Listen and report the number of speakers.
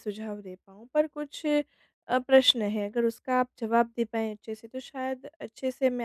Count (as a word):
one